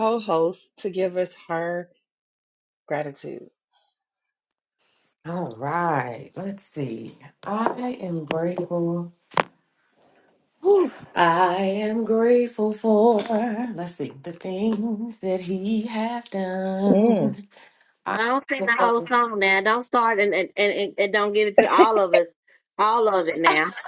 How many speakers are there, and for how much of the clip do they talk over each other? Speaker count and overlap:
3, about 5%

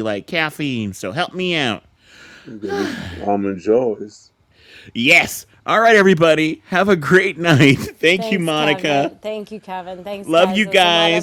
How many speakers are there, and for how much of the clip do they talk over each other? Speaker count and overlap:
3, about 17%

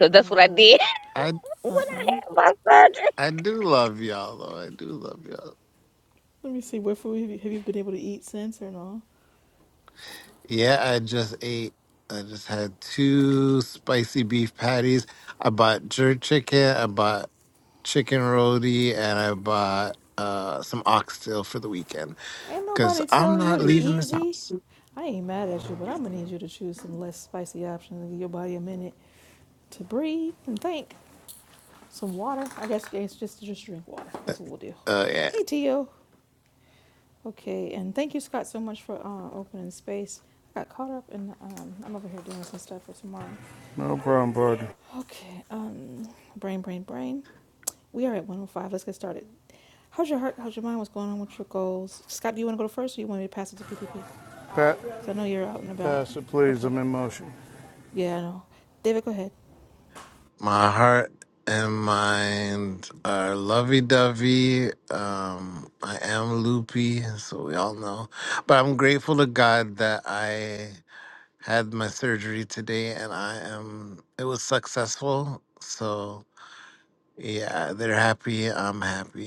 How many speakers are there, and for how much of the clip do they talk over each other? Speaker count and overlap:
4, about 3%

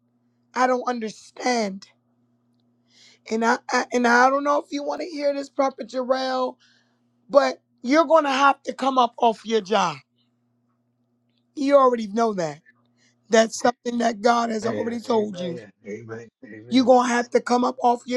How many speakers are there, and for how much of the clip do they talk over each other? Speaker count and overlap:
2, about 6%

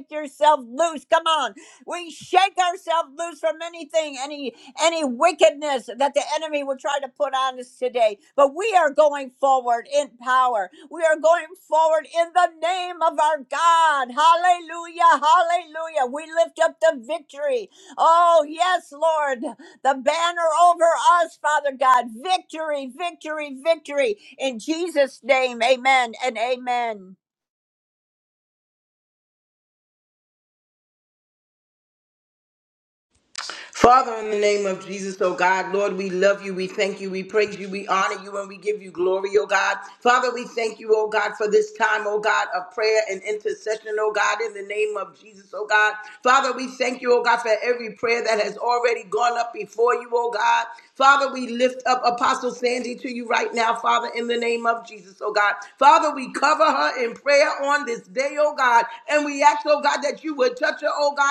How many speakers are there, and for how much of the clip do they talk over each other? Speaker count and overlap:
2, no overlap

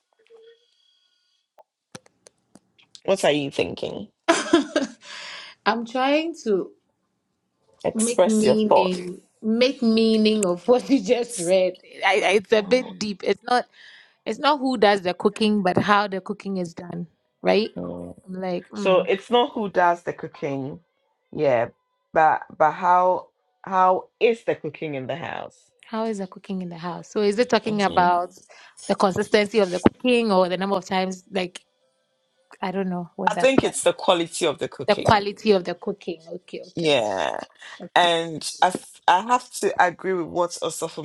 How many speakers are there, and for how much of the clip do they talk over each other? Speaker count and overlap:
2, about 7%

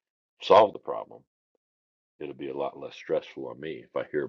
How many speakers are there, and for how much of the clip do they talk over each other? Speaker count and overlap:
1, no overlap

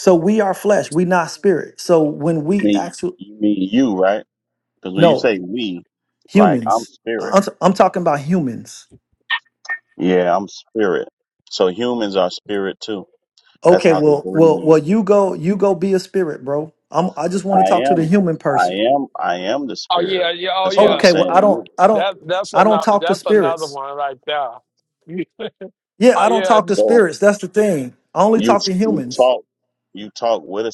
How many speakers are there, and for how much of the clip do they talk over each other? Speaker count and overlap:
3, about 23%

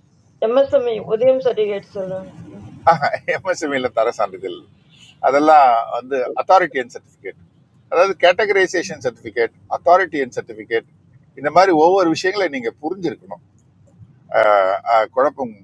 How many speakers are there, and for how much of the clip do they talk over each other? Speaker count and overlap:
2, no overlap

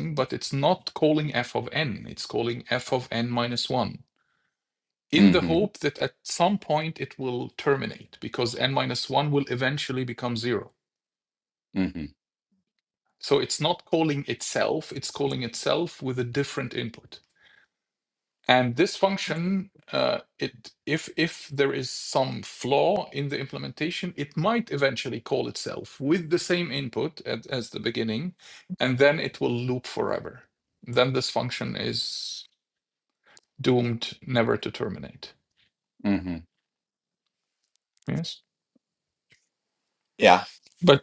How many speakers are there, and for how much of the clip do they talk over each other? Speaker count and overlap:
2, about 1%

